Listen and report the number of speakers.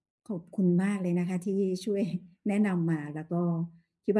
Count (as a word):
one